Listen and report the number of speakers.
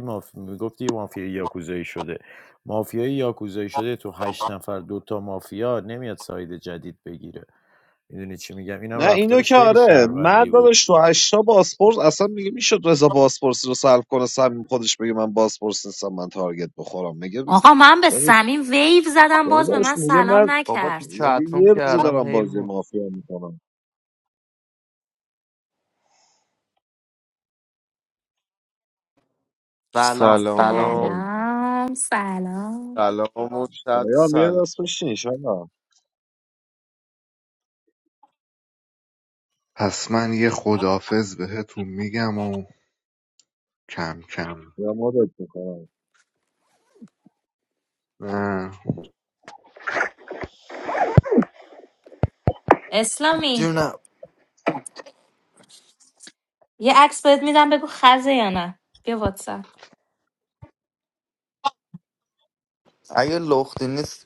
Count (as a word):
six